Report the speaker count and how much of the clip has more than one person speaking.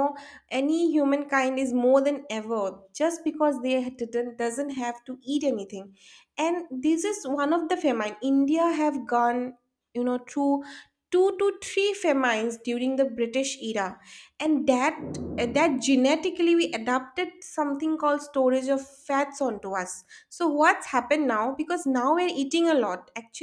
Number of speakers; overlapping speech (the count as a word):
one, no overlap